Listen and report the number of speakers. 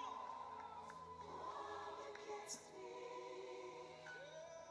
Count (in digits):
0